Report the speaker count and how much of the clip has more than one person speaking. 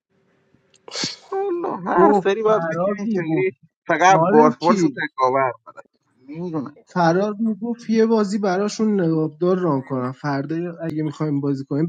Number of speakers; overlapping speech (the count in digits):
2, about 20%